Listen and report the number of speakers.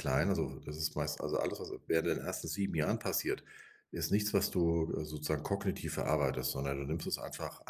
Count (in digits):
1